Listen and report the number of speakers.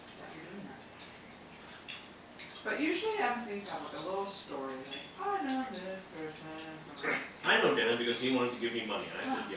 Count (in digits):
2